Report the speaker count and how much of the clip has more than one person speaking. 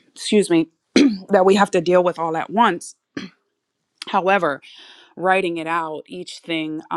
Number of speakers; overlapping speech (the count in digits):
1, no overlap